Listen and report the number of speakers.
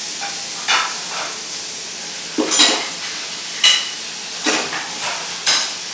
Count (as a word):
zero